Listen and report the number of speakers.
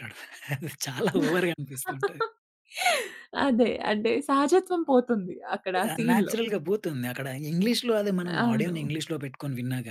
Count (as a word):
two